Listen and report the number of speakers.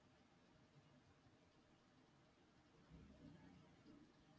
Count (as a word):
zero